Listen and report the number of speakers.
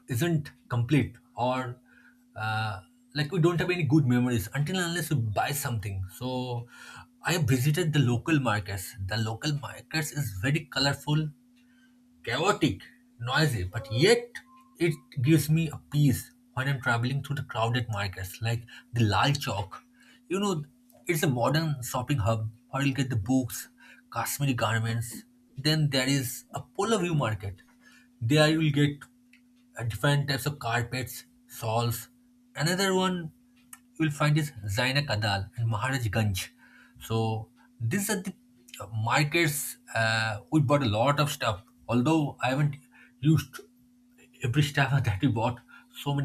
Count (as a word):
one